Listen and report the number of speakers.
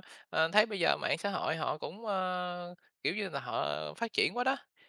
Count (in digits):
1